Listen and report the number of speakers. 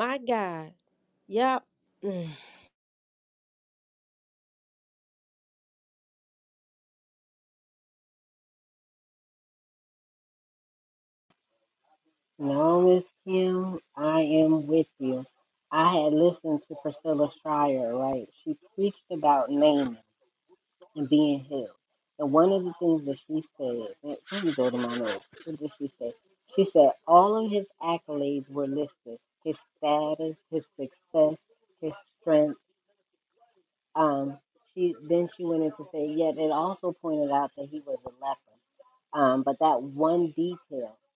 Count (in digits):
2